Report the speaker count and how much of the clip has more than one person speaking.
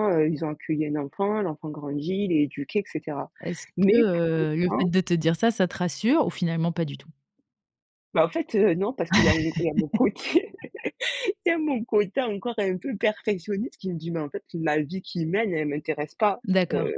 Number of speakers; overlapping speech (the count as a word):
two, about 9%